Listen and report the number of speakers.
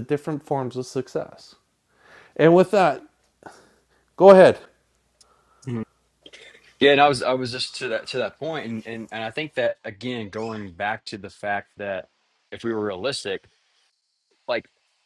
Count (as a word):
two